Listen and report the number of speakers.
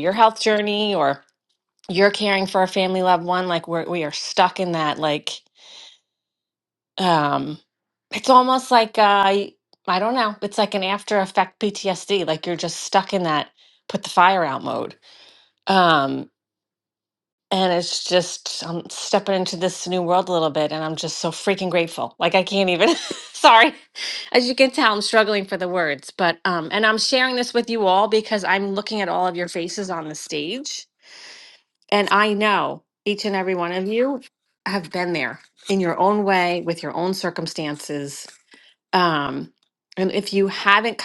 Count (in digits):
1